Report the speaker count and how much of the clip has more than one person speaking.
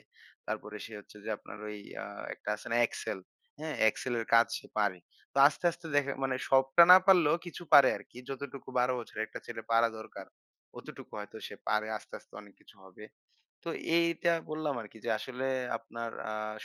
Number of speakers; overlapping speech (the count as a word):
one, no overlap